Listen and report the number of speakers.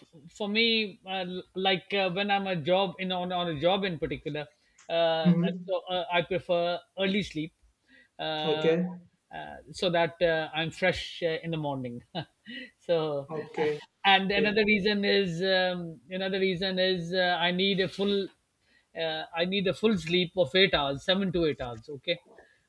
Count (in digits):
2